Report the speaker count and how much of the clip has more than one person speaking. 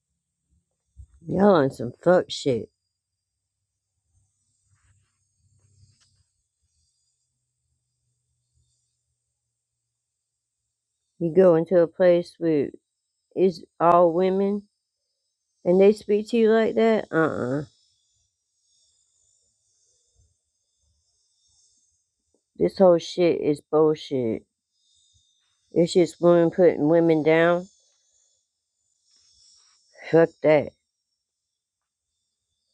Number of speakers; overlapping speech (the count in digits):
1, no overlap